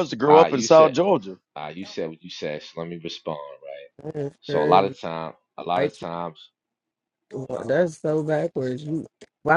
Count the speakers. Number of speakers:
3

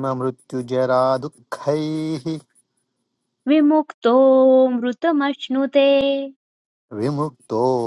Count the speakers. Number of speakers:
2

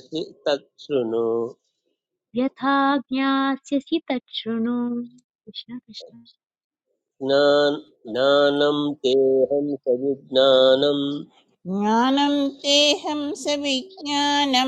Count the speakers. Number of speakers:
3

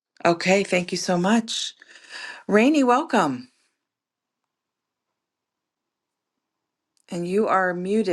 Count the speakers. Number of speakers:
1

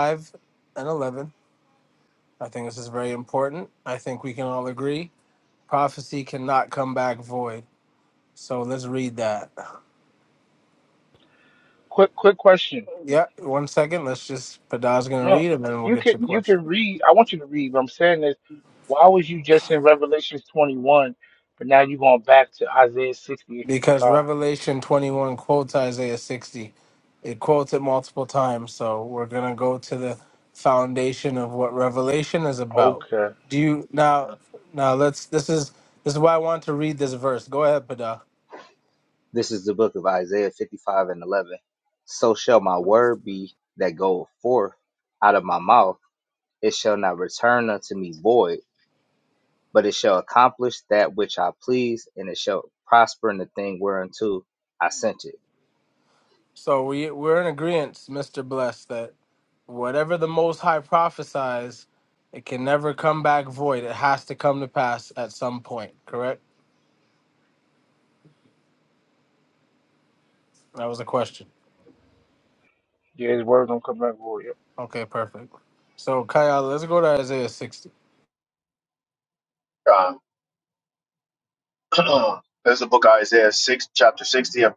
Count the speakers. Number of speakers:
4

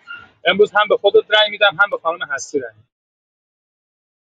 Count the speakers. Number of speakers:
1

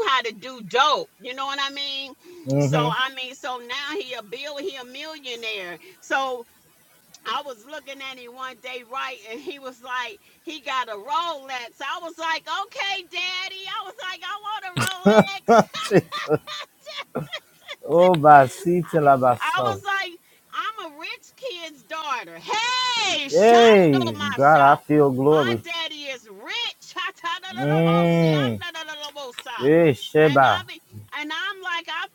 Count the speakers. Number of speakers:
2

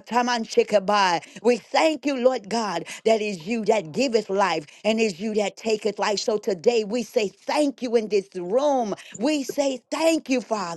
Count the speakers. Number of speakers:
1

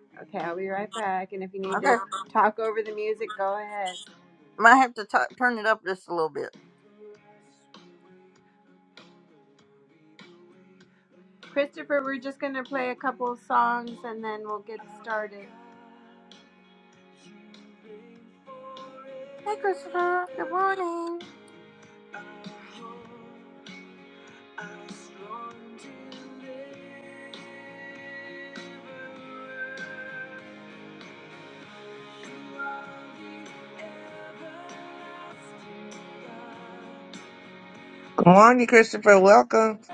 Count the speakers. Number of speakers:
3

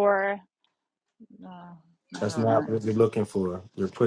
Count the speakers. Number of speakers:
2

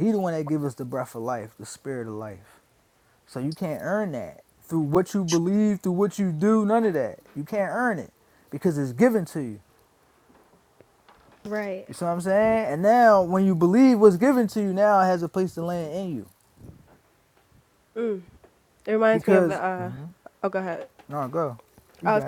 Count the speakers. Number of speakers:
2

